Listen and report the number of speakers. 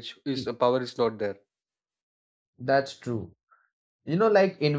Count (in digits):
2